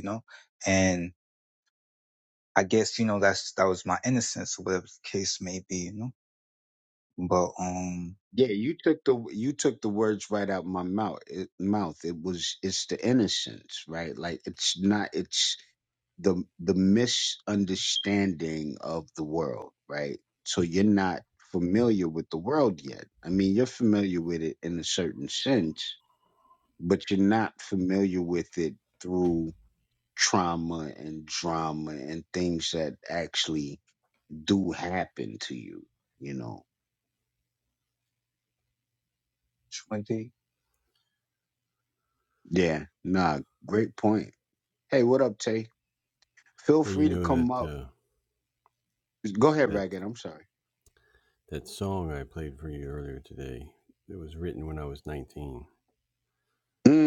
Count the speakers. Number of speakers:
3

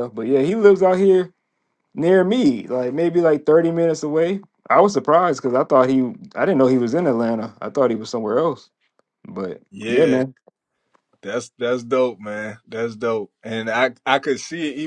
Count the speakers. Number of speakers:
2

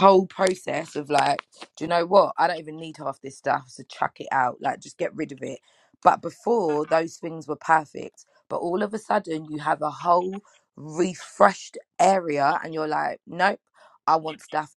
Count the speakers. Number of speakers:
1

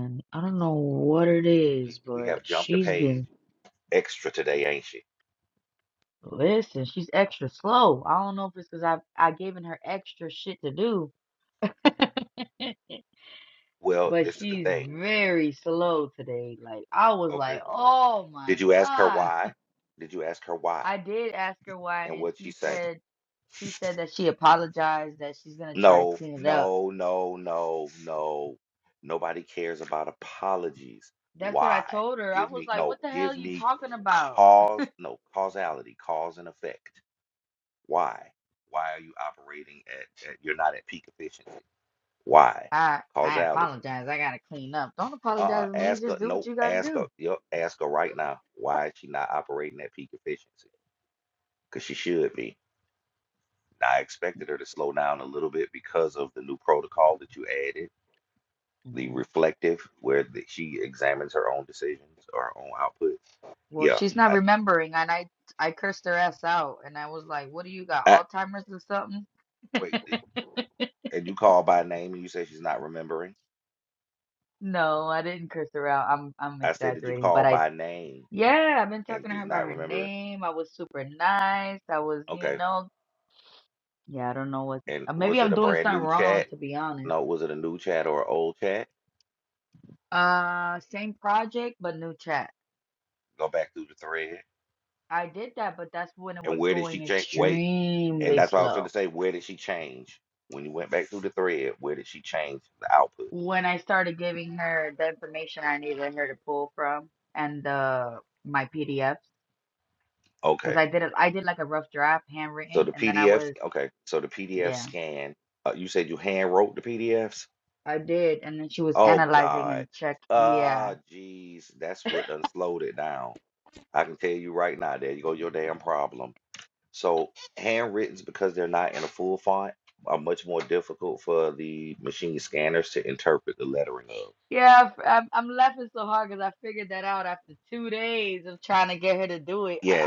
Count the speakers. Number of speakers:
2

